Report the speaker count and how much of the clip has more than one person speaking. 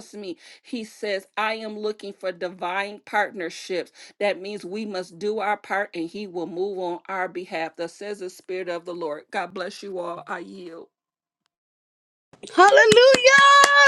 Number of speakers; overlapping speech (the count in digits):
2, no overlap